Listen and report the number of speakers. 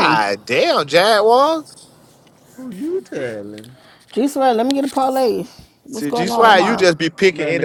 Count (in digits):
3